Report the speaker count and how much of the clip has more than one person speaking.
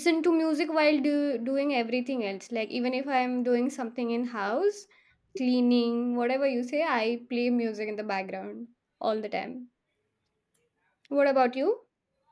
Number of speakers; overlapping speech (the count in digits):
1, no overlap